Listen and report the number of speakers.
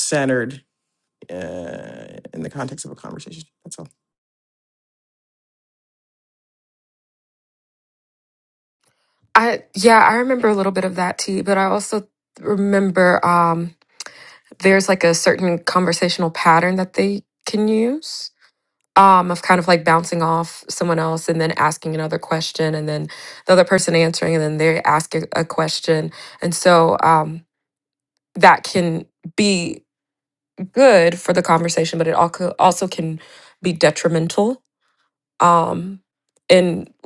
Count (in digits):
2